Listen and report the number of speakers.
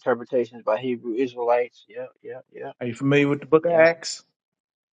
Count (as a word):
two